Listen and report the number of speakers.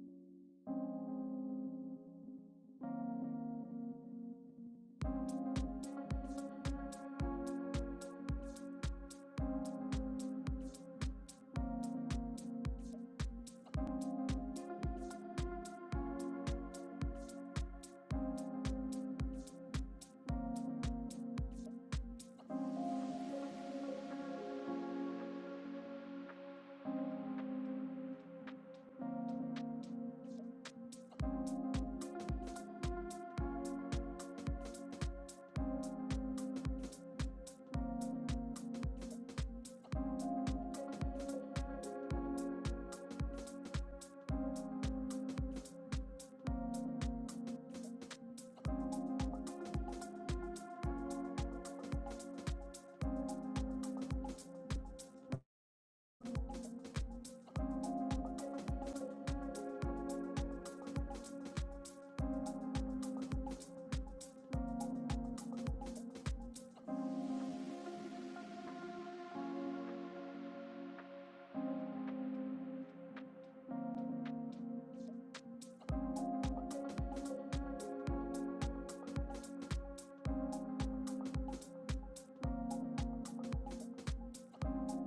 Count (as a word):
zero